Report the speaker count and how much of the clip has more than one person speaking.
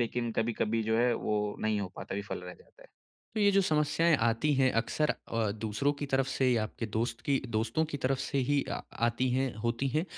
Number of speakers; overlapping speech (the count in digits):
2, no overlap